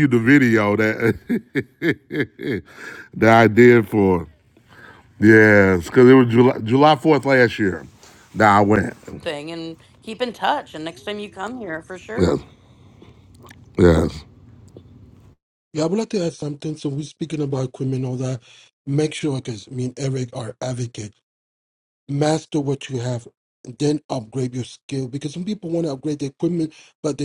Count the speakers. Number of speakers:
3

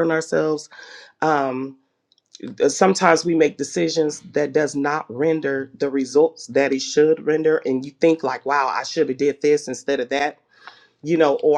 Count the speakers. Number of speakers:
1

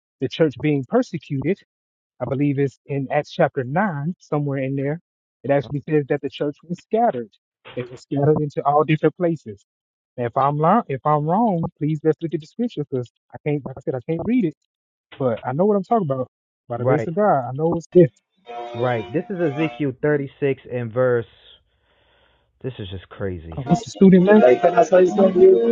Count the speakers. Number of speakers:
3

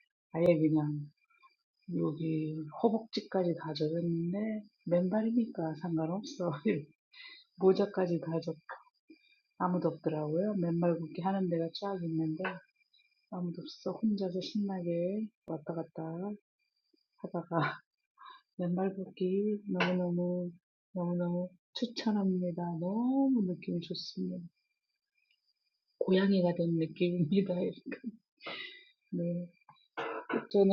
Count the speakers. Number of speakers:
1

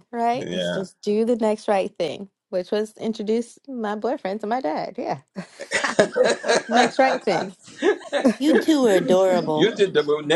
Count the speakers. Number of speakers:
3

